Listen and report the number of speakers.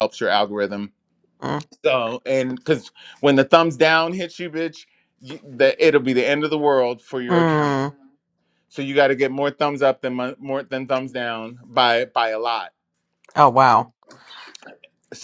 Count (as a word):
two